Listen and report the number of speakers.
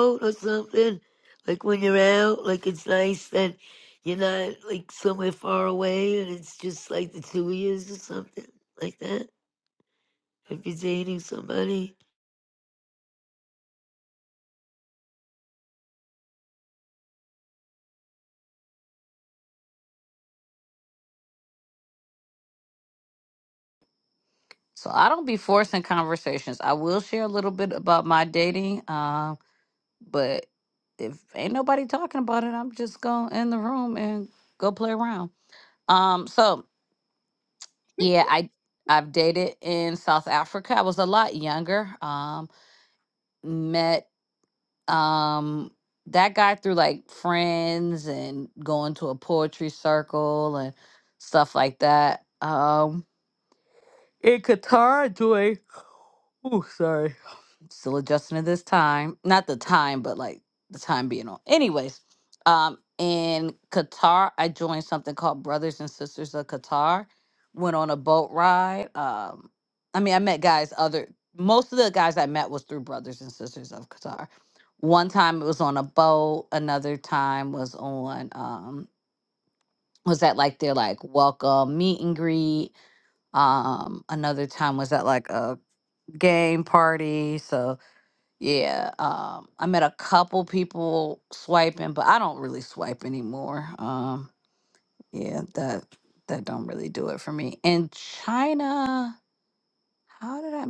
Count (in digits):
2